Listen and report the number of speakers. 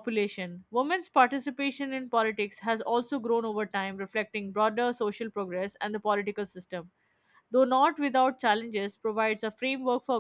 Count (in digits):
1